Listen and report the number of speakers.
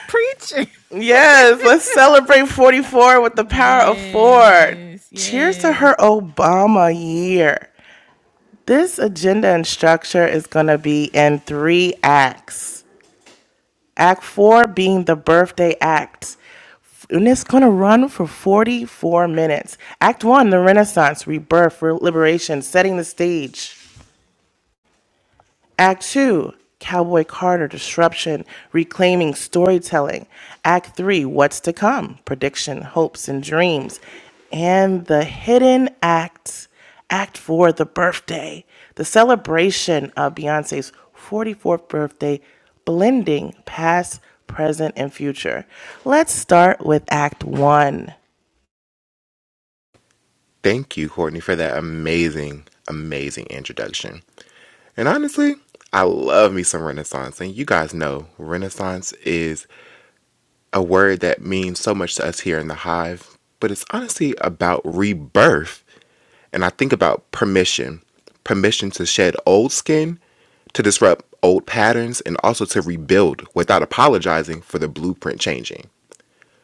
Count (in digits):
3